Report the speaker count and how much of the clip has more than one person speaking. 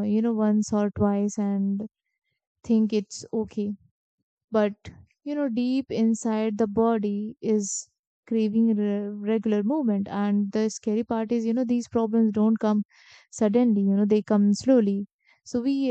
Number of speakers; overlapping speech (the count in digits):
1, no overlap